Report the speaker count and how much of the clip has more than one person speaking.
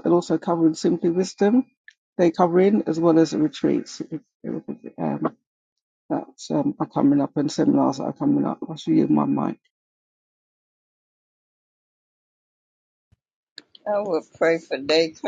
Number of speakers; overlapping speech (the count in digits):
2, no overlap